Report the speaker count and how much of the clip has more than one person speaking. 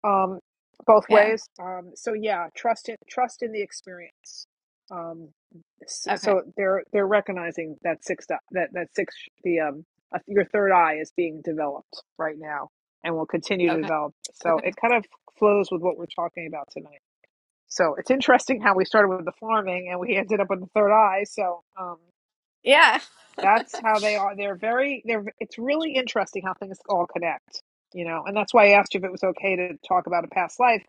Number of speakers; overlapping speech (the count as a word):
two, about 3%